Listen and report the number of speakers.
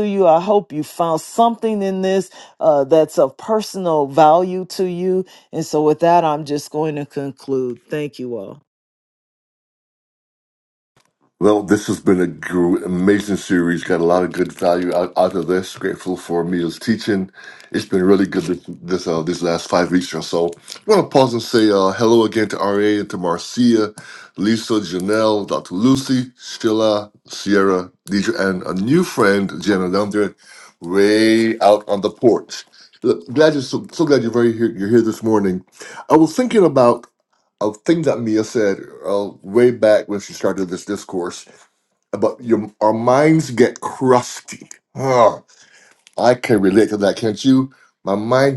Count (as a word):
two